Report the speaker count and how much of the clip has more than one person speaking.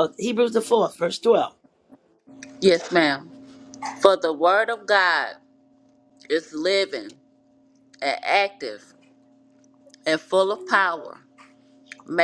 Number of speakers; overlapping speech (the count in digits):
2, no overlap